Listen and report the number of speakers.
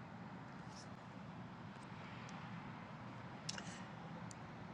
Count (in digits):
0